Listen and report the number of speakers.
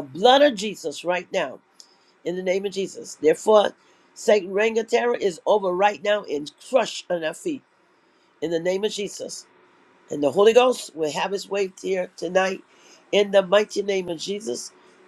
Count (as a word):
one